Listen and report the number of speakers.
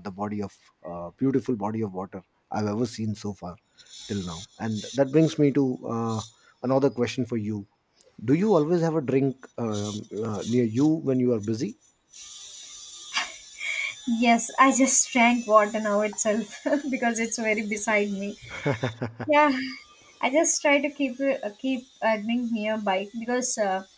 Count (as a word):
two